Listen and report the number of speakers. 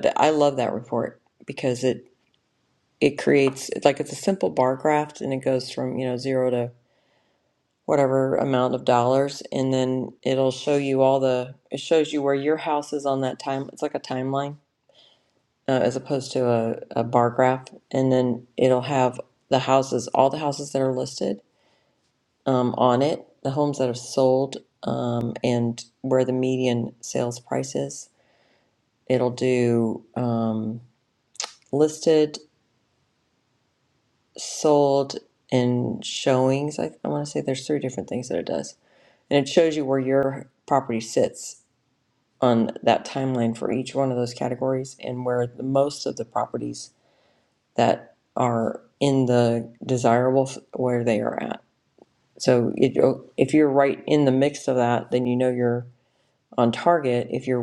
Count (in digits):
1